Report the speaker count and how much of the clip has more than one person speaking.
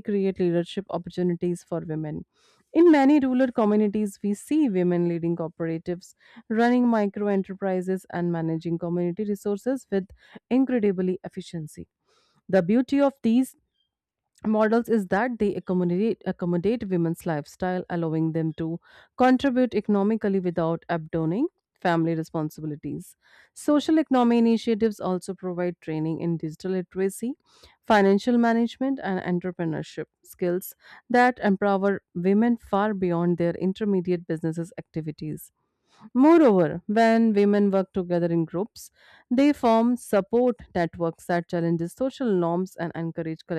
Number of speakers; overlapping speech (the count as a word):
one, no overlap